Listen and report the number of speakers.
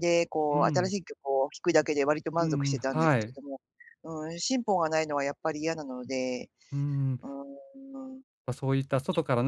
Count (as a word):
two